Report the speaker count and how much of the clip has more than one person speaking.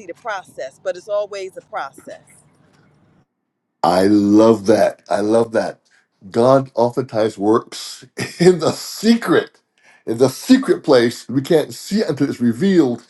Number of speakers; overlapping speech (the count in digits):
2, no overlap